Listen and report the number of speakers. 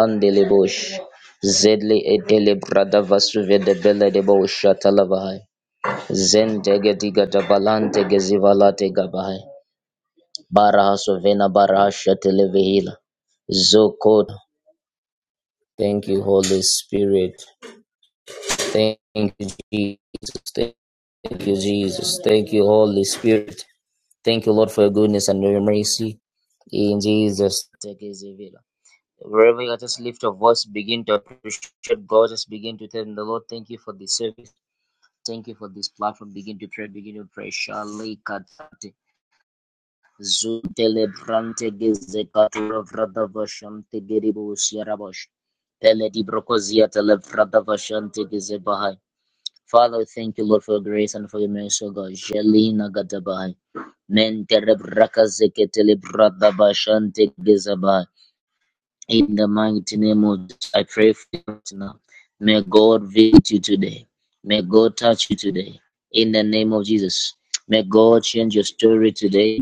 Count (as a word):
one